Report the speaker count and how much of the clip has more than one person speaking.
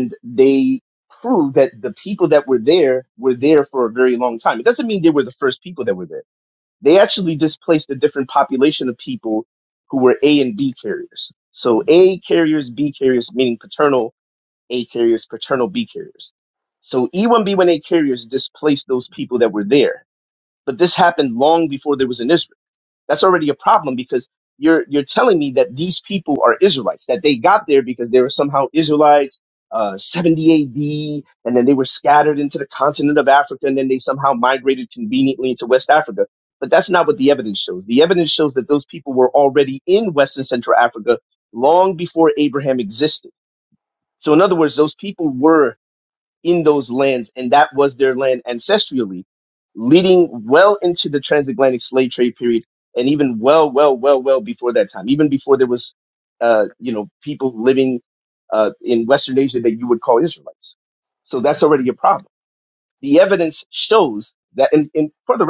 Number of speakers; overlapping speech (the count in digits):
1, no overlap